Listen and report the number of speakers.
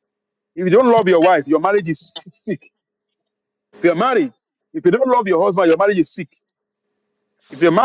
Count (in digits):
1